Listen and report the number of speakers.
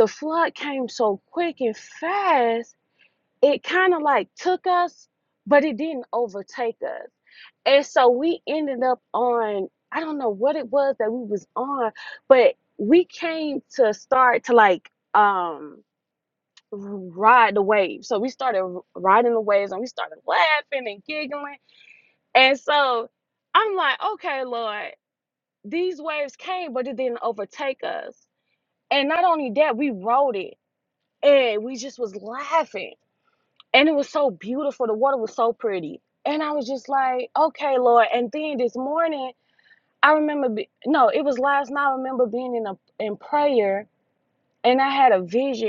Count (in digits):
1